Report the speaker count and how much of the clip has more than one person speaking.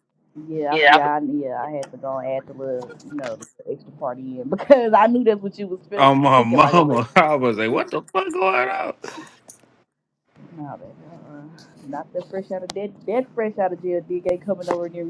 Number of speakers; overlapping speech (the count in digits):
2, about 7%